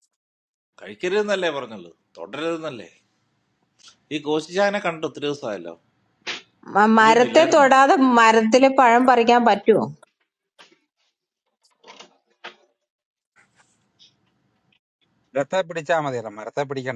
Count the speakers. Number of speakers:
3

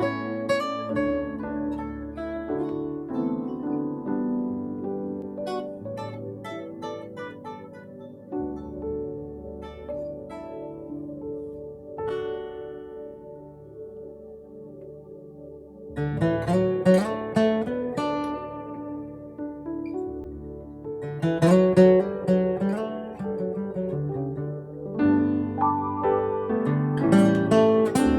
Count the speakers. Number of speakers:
0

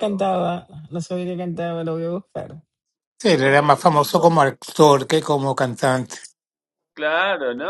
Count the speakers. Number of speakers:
3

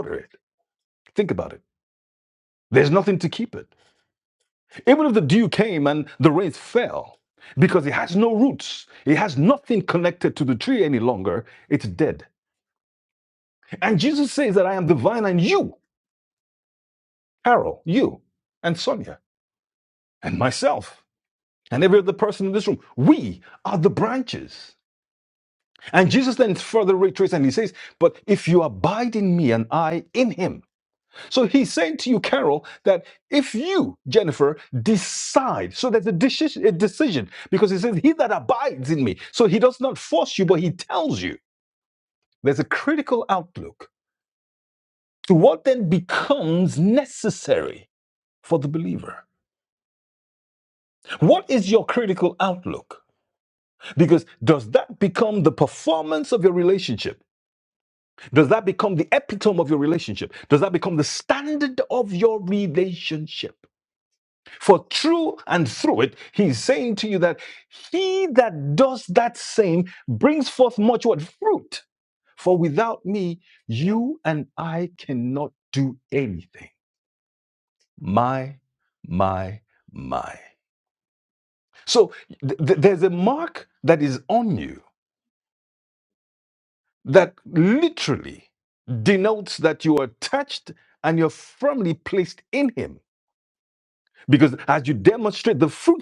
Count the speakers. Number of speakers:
1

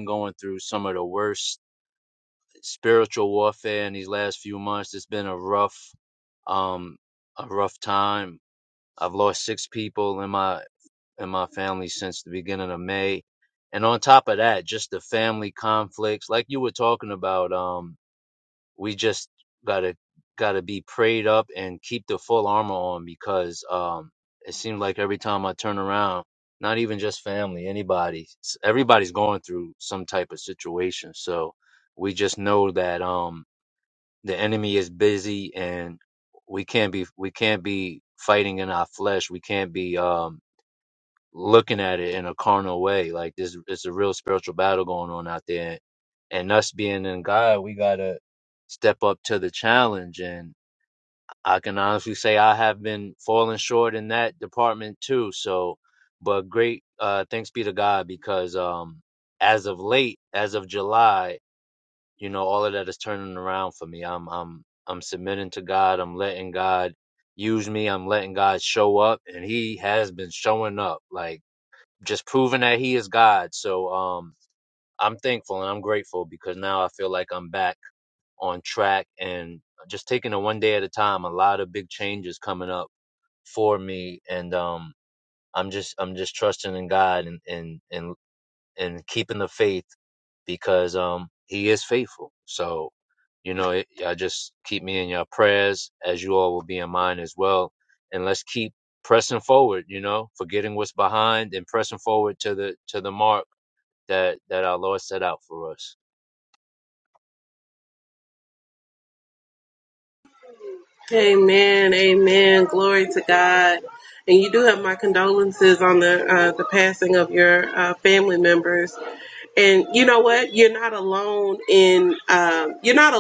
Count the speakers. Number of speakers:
2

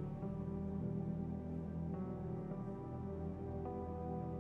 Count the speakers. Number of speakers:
0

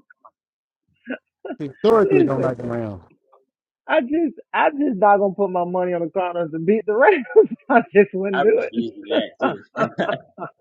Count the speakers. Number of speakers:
3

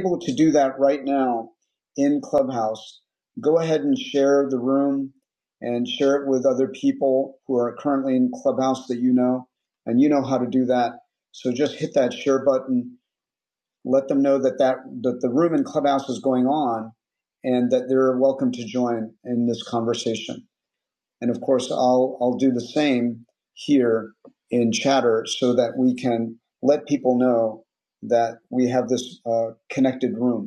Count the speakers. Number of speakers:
1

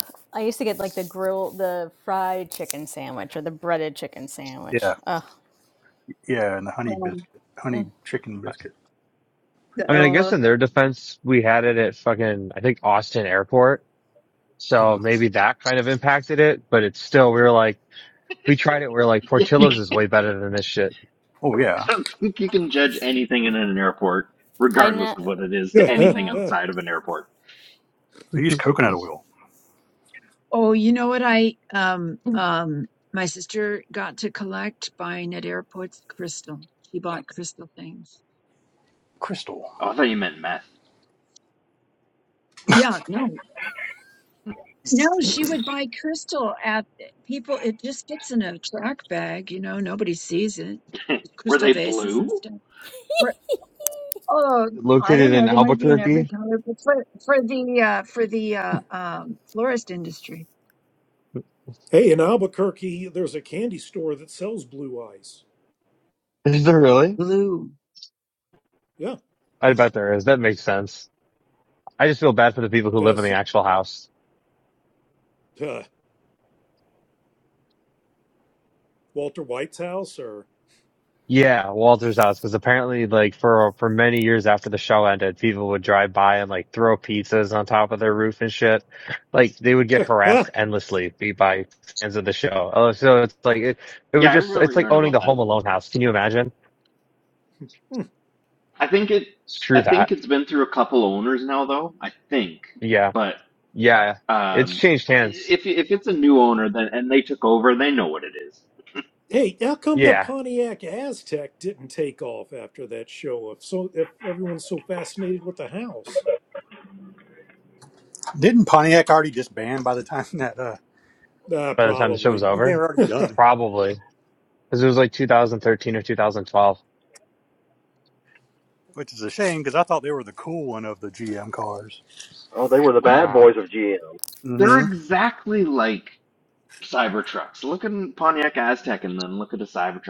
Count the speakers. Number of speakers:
7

